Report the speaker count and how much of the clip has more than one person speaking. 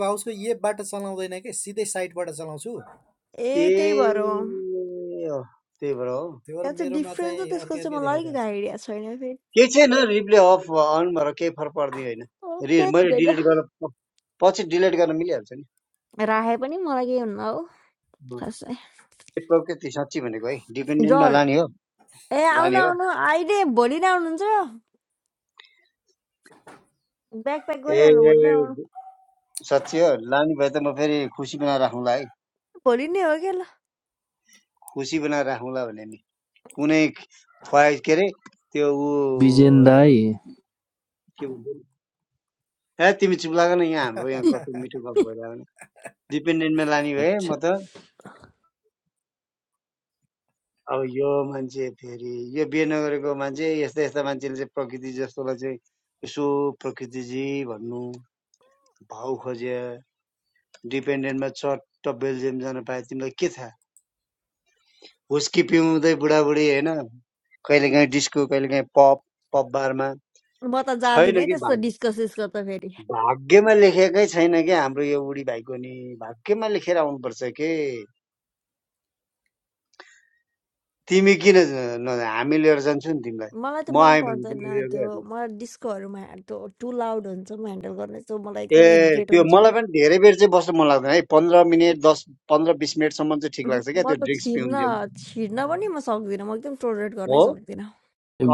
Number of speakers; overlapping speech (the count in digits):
4, about 8%